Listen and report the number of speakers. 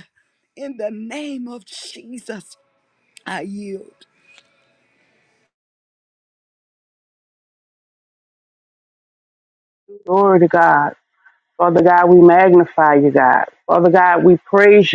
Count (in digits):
2